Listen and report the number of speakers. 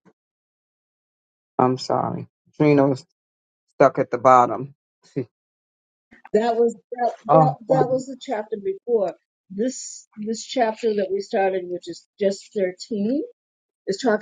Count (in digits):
2